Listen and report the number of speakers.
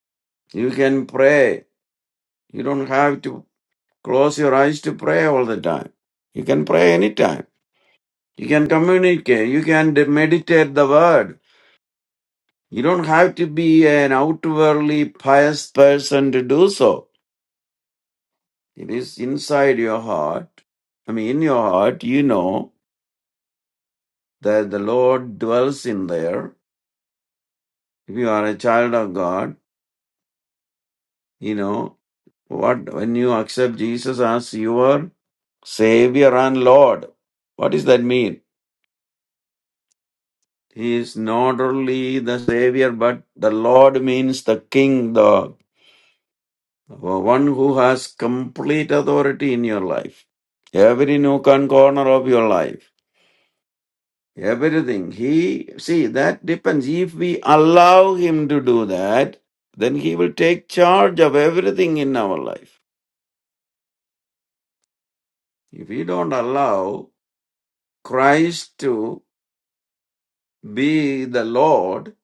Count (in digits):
1